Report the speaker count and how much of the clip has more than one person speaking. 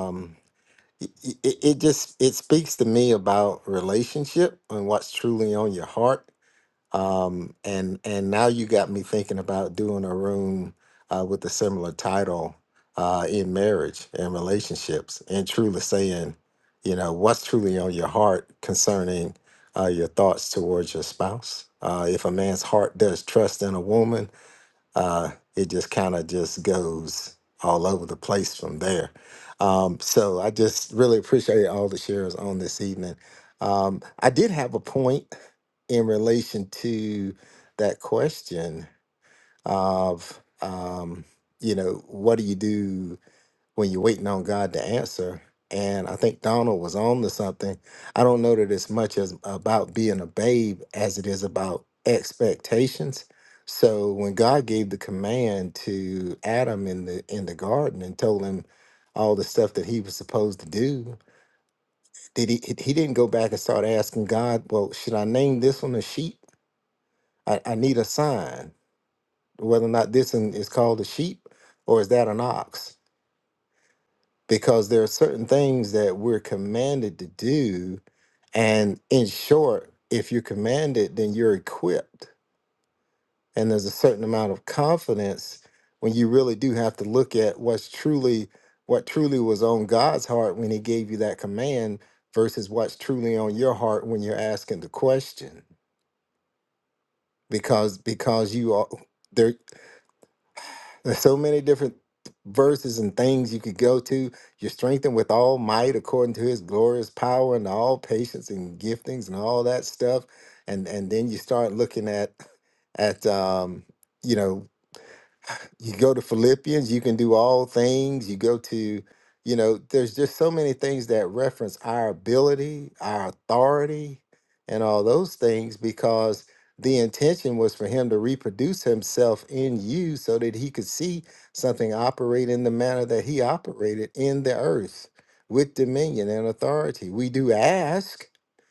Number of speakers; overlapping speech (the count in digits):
1, no overlap